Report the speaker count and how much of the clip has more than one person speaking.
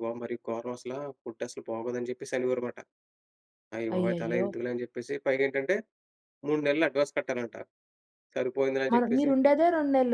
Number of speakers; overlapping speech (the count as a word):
two, about 11%